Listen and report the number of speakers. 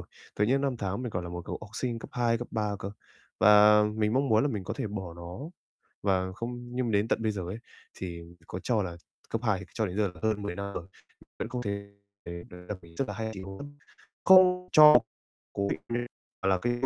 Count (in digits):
1